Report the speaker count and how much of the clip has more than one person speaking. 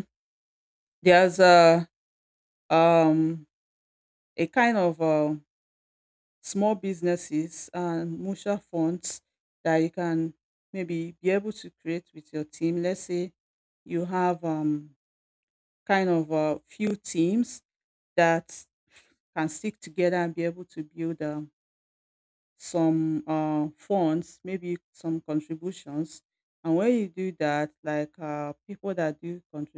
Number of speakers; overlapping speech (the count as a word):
one, no overlap